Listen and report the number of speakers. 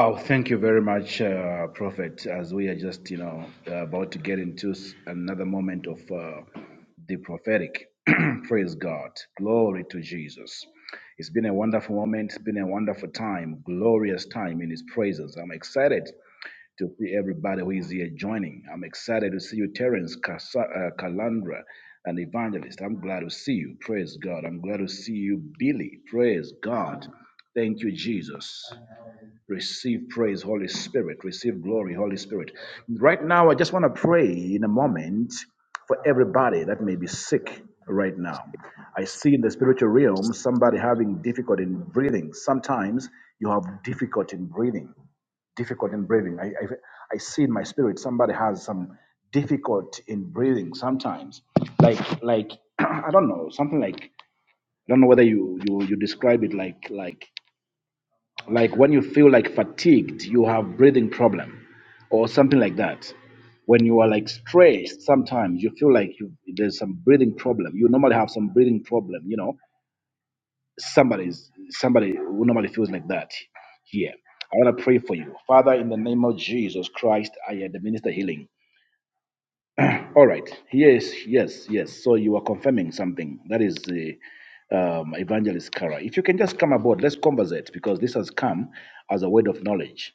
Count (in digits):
1